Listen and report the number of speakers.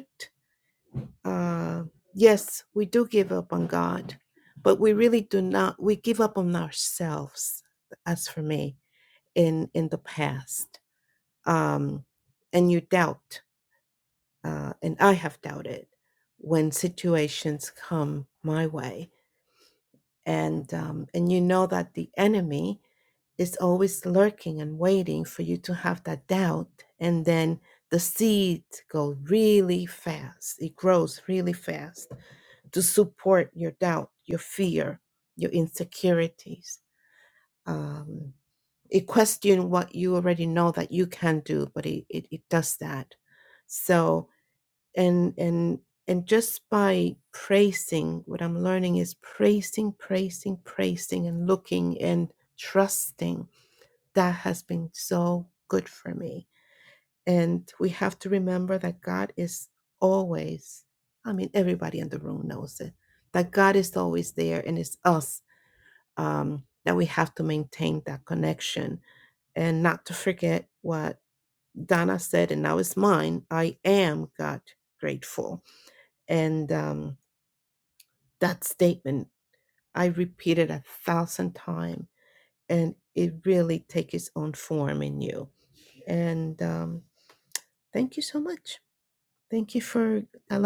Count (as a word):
one